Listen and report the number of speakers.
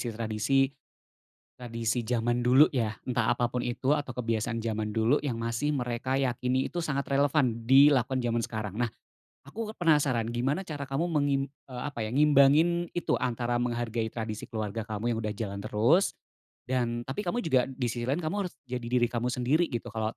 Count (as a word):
one